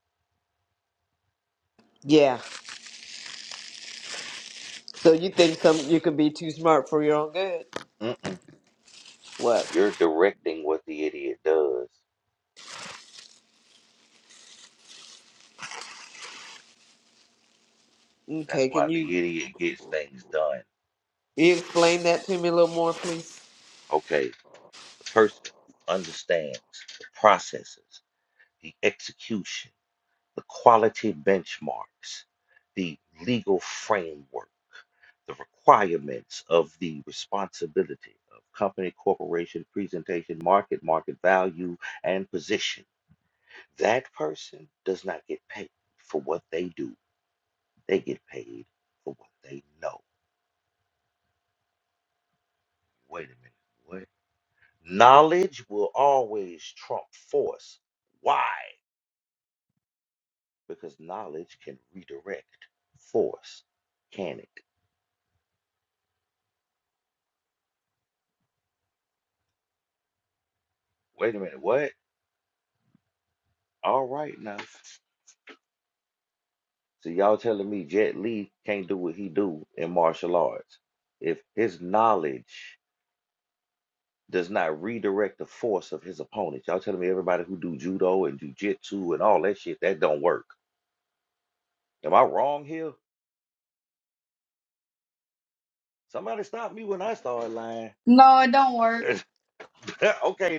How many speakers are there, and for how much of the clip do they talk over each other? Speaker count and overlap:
three, about 1%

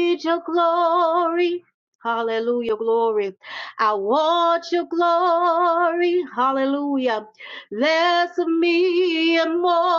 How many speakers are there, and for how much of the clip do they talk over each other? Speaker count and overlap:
one, no overlap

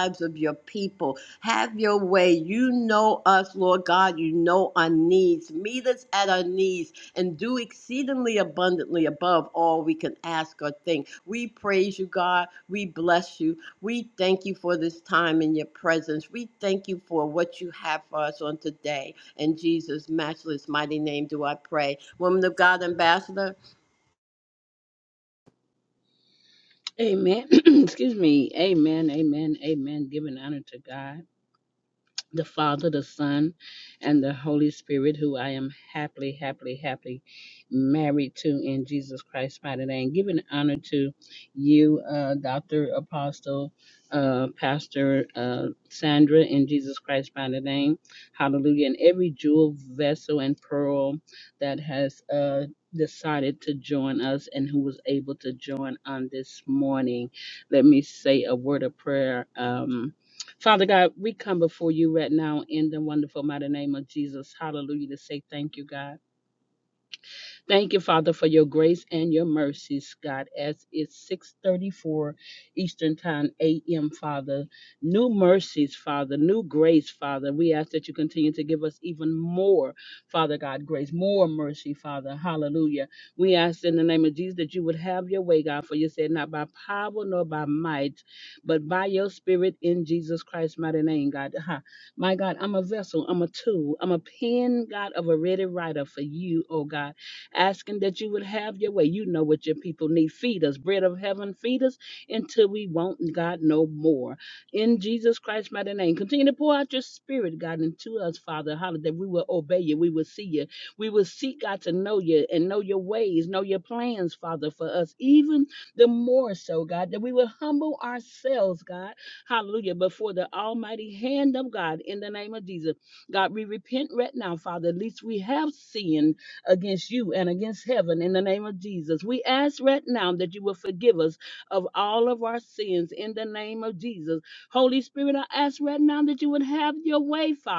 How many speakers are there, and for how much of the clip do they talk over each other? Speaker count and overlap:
two, no overlap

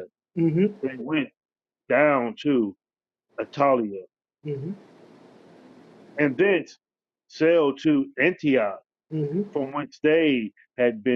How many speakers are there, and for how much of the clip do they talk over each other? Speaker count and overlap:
two, no overlap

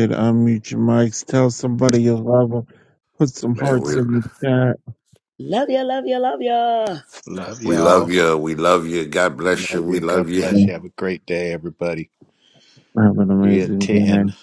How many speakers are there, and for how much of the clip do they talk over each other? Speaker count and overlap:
four, about 21%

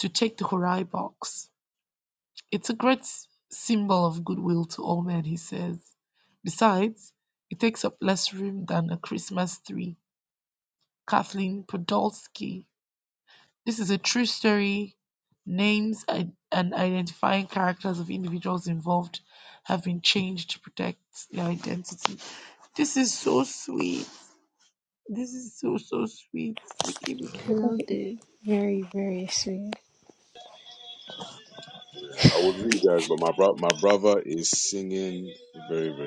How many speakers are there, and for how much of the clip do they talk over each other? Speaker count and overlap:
three, no overlap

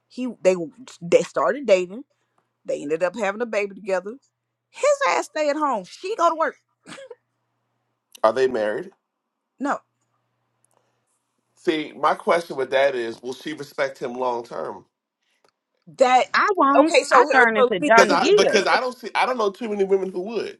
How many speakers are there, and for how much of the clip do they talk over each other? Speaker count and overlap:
three, about 10%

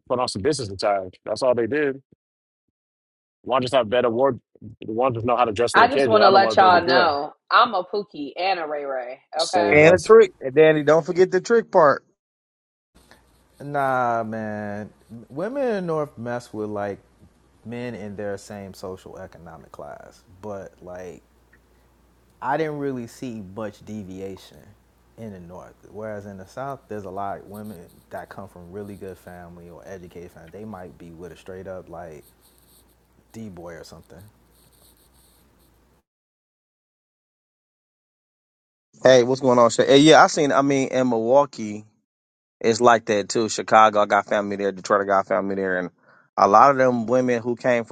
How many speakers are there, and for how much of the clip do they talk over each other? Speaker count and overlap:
four, about 4%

